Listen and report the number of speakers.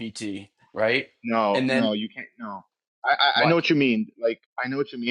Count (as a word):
two